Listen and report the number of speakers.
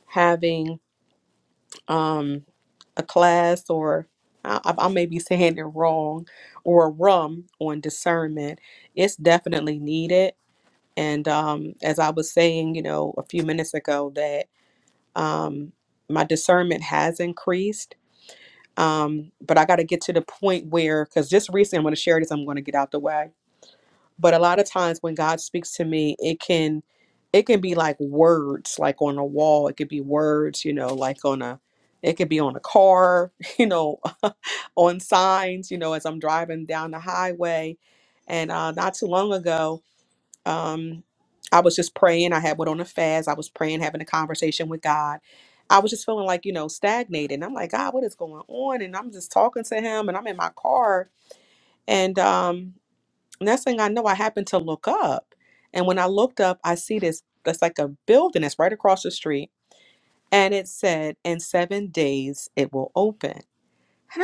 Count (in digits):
1